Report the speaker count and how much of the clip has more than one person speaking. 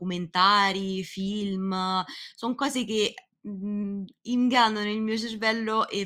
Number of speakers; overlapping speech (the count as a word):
one, no overlap